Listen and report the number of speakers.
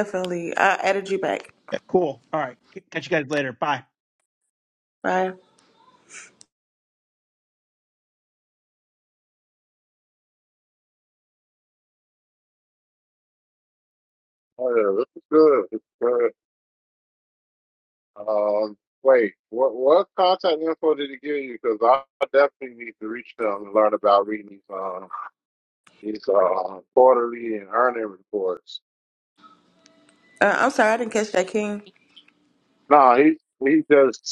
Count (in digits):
3